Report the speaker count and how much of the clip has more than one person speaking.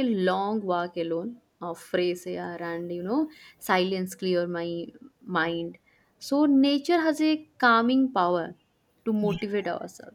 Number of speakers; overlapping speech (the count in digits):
1, no overlap